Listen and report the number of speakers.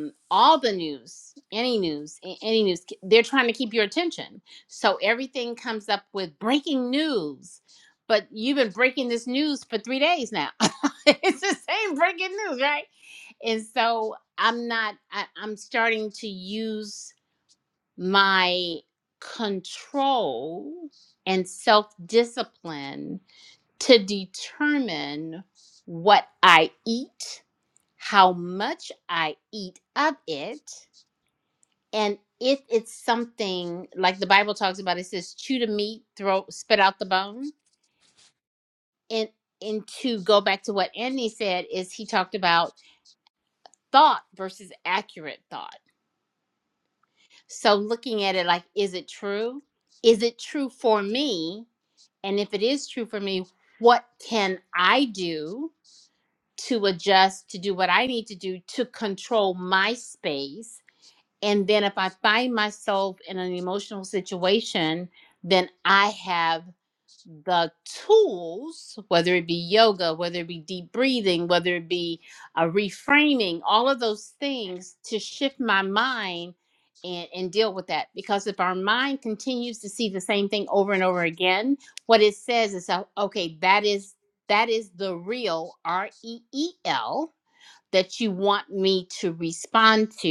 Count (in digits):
1